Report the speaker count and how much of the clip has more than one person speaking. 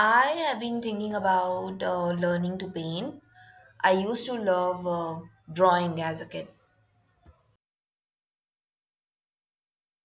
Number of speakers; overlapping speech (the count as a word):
one, no overlap